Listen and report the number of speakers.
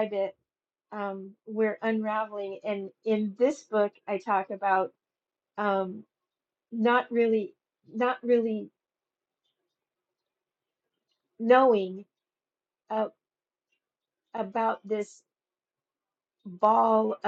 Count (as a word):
one